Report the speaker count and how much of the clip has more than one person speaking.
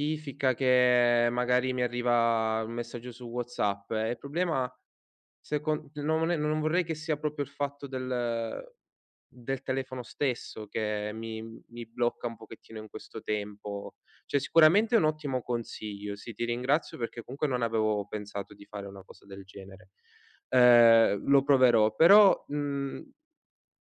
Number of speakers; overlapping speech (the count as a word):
one, no overlap